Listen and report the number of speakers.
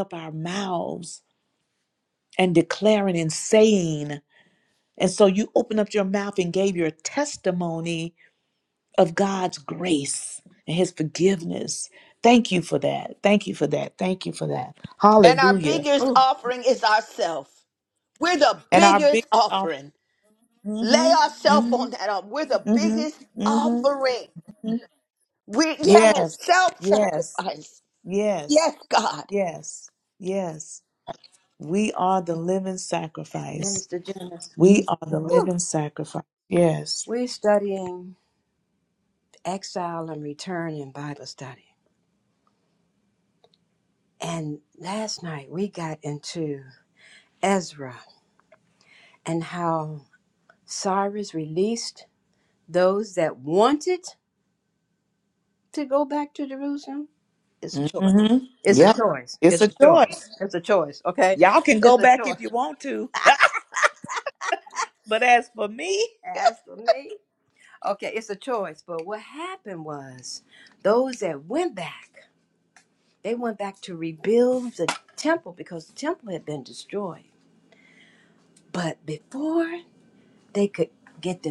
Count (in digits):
3